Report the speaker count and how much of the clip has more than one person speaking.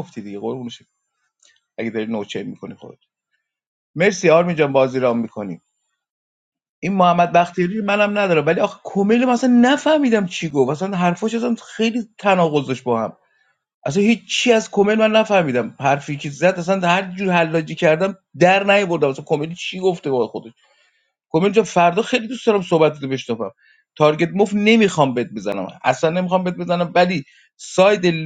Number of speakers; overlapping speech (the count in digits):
1, no overlap